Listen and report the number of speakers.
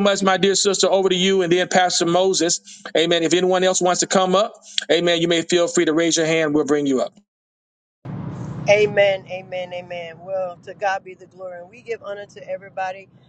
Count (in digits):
2